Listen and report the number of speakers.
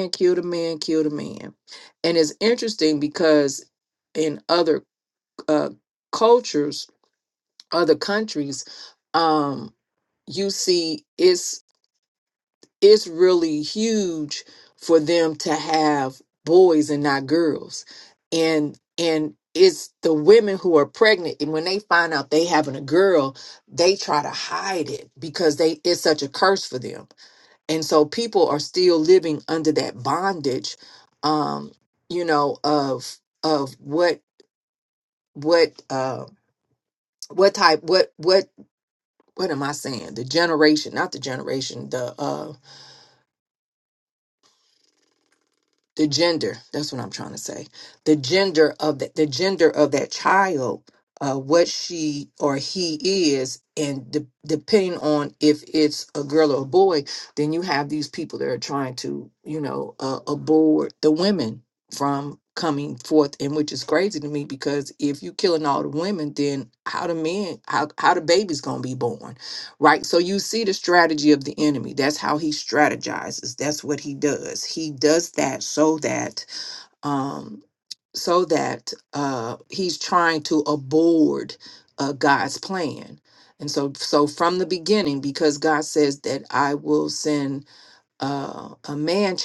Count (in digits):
1